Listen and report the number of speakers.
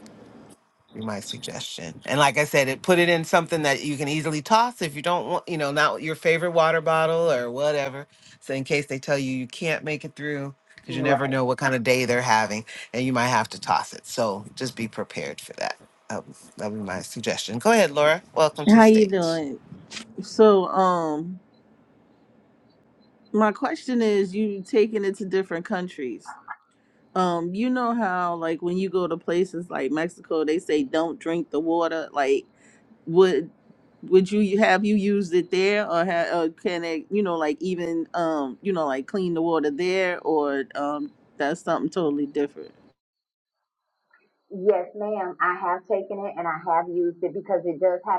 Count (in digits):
3